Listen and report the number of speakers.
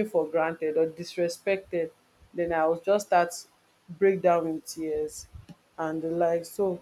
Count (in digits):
1